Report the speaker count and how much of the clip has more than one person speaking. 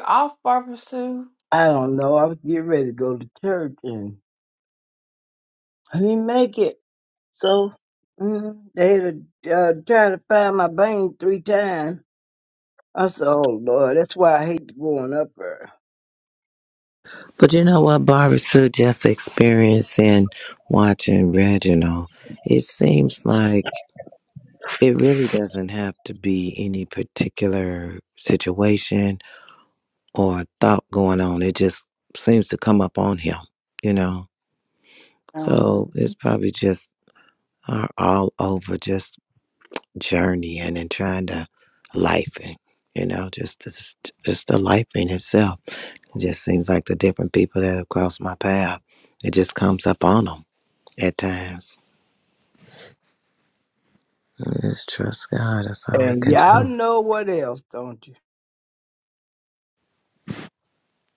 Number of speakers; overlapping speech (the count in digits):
3, about 2%